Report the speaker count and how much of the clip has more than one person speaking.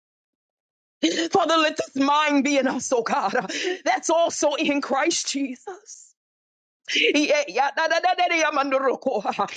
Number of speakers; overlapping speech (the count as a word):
one, no overlap